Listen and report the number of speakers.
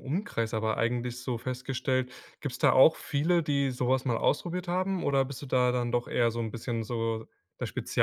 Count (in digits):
1